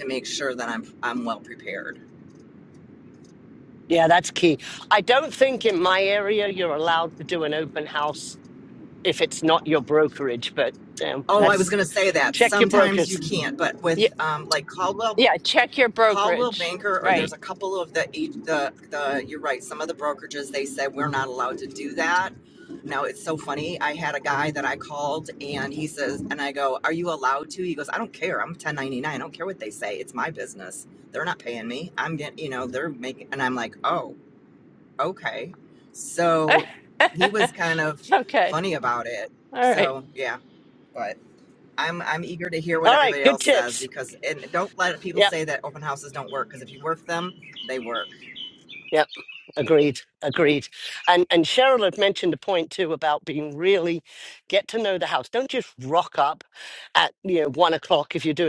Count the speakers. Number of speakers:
three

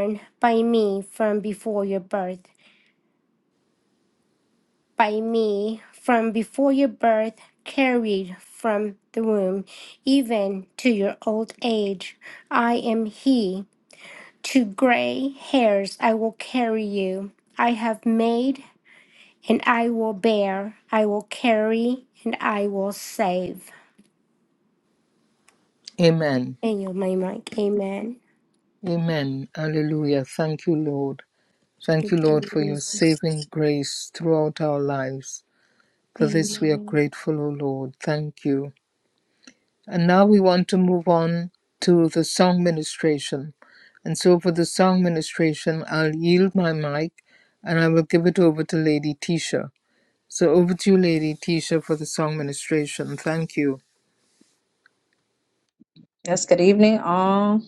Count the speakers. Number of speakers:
three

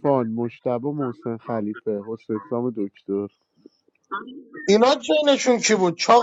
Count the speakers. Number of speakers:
two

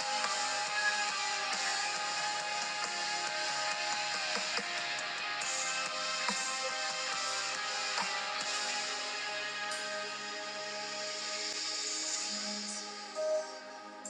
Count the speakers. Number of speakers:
zero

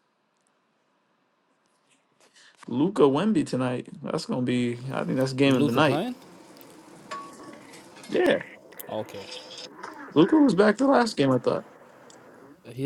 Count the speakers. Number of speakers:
two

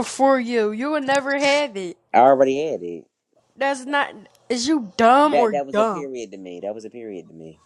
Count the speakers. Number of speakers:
two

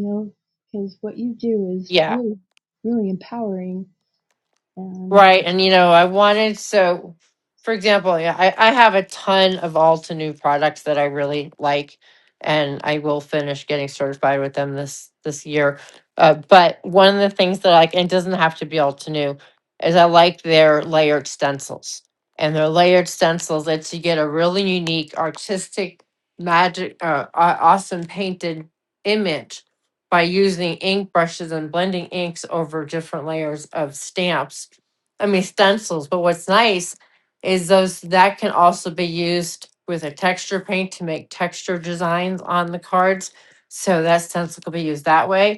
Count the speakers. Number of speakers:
two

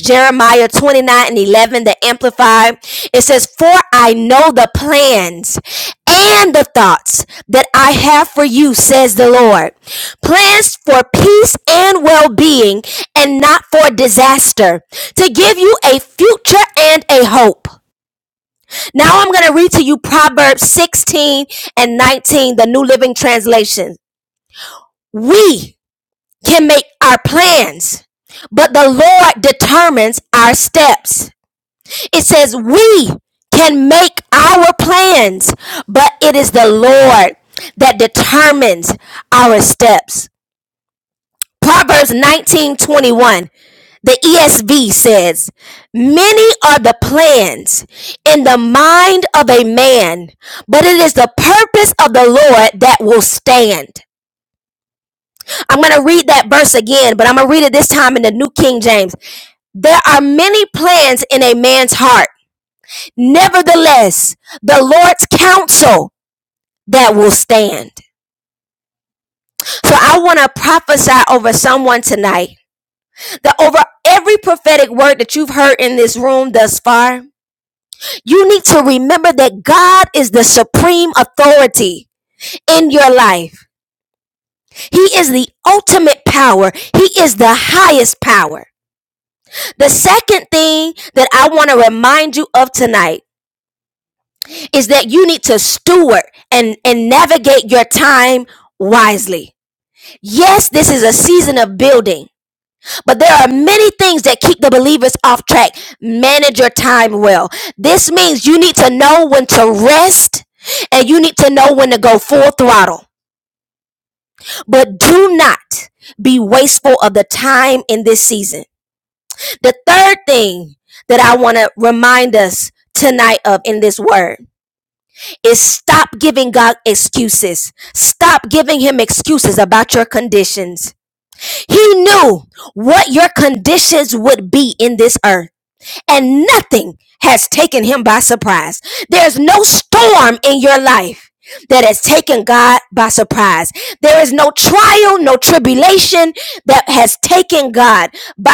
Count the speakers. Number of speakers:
one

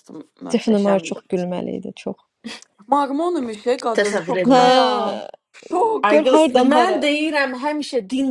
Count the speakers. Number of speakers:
three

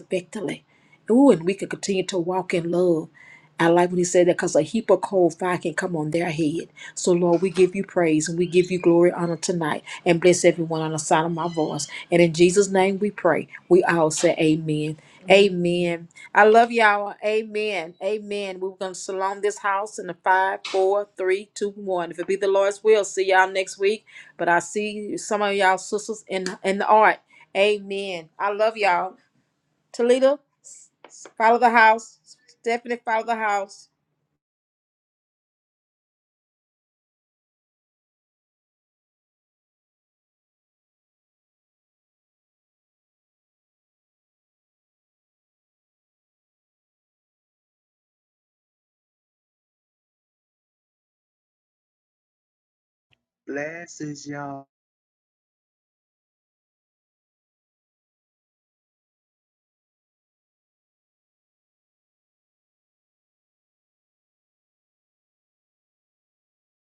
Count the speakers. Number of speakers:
two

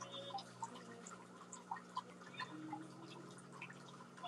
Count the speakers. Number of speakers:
zero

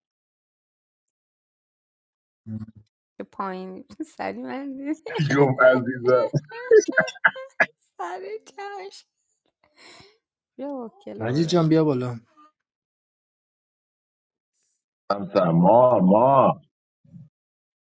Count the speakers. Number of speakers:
three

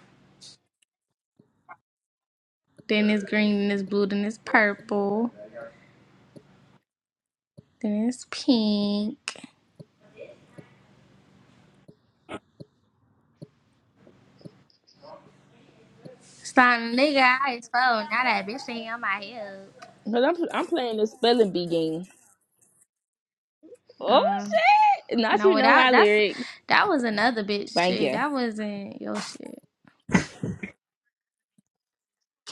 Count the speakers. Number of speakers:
two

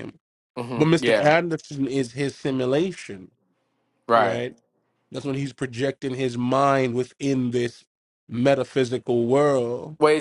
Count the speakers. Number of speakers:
two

